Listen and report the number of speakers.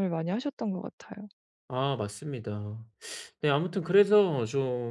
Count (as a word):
two